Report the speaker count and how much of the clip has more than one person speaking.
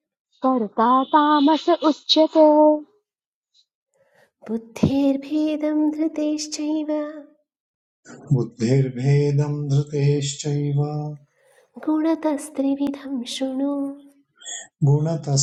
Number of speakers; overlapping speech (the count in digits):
3, no overlap